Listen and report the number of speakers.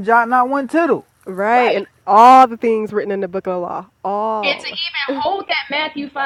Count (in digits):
3